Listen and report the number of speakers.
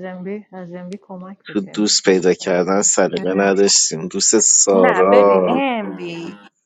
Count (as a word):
three